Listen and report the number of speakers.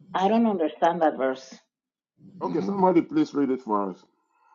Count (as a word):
two